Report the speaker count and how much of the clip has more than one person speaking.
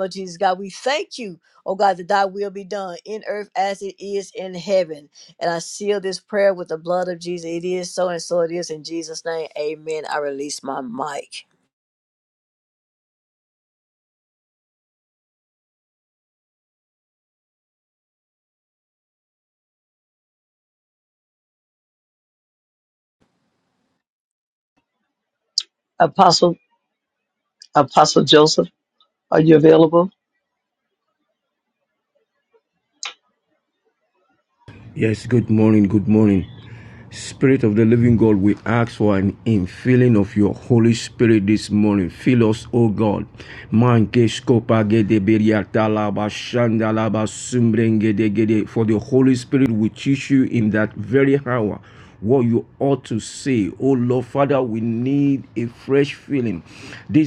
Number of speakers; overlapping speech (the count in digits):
3, no overlap